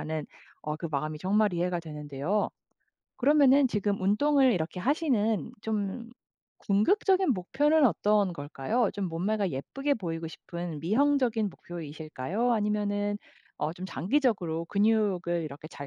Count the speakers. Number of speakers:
1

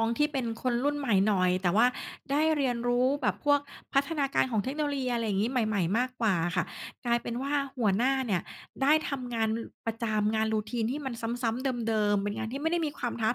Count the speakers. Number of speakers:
1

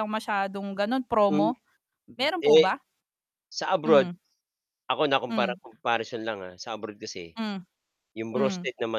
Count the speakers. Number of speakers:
2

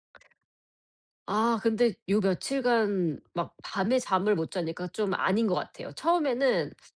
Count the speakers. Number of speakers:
1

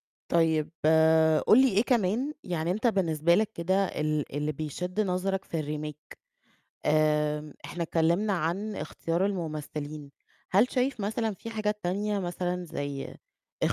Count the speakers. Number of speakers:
1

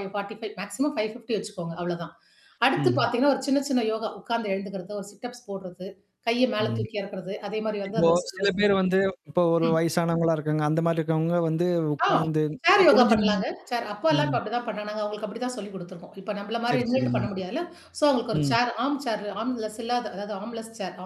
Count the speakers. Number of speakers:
2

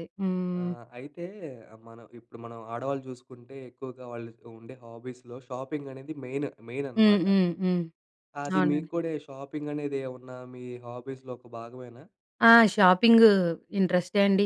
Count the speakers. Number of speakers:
2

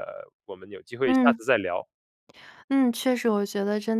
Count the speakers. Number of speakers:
2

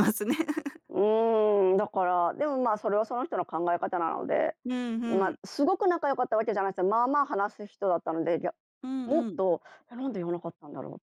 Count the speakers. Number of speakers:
2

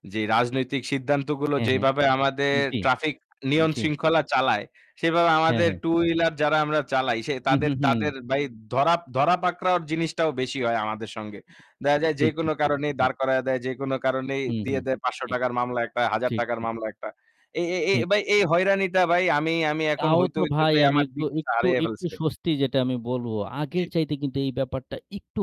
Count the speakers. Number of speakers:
2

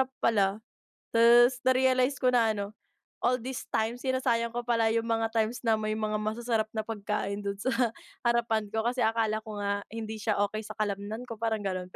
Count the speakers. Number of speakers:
1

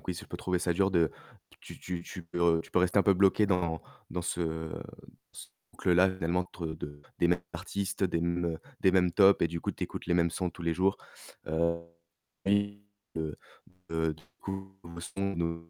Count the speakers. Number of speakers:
1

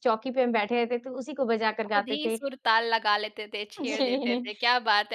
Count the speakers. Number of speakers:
2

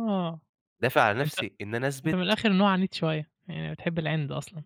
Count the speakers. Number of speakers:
2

